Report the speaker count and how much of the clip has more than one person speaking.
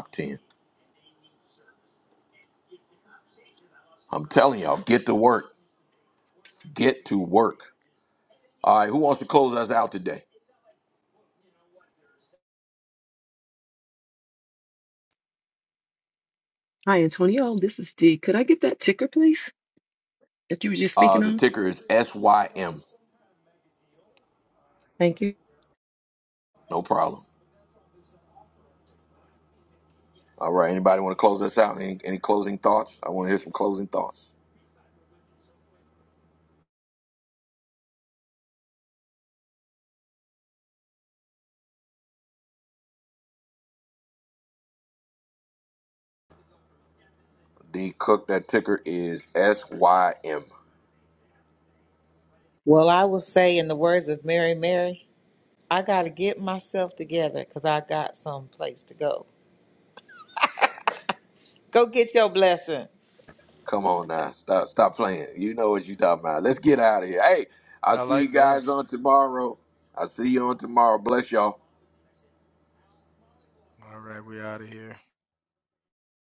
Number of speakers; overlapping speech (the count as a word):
four, about 2%